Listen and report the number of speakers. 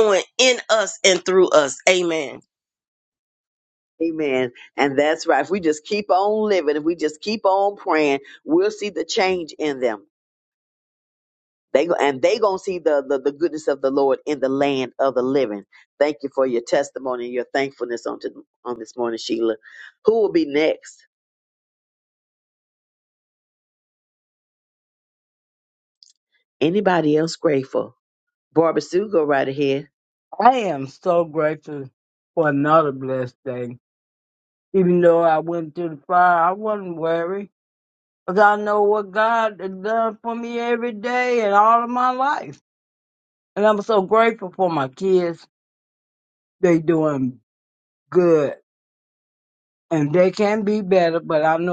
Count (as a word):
three